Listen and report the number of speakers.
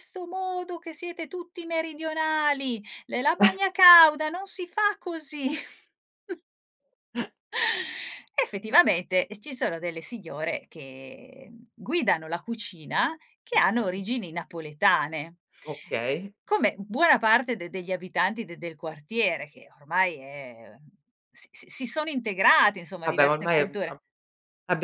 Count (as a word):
two